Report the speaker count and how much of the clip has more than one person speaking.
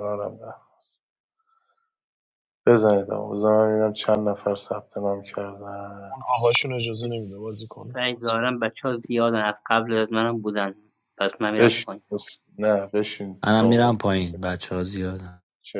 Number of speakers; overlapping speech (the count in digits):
4, about 6%